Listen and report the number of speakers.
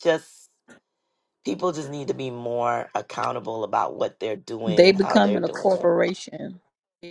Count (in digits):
2